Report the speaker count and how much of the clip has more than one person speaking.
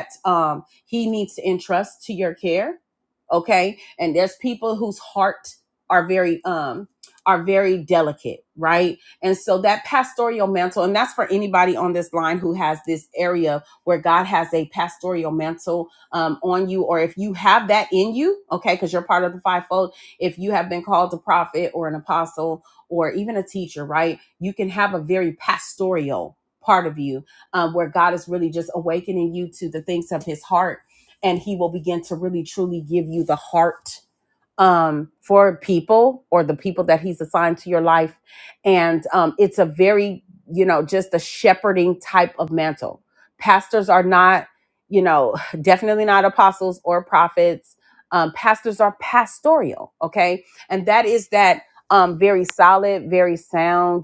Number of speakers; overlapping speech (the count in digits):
1, no overlap